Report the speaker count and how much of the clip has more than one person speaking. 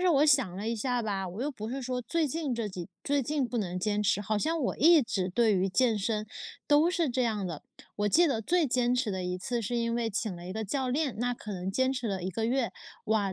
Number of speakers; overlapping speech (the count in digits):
1, no overlap